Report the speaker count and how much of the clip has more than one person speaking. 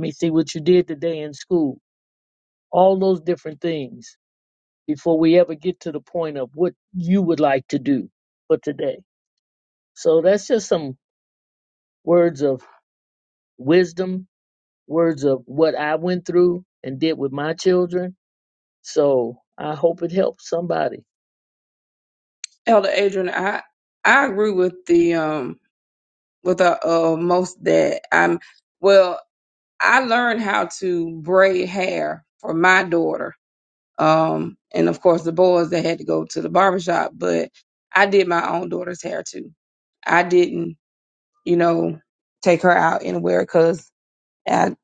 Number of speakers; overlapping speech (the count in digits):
2, no overlap